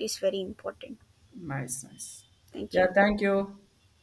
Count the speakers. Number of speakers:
2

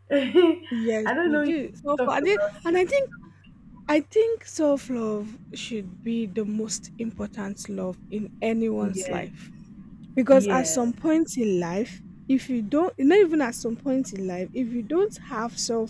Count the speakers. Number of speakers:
2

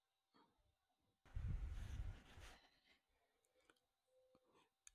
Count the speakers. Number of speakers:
0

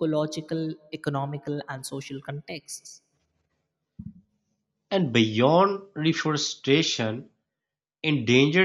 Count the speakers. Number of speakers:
2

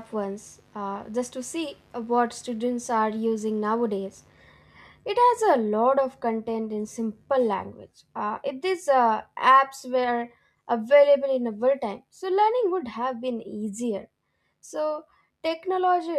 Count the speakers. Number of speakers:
1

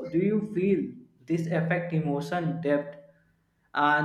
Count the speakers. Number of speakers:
1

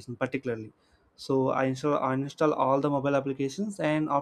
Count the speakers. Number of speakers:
1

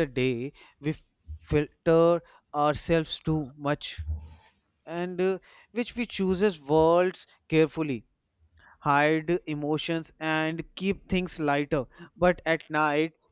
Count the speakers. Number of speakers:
1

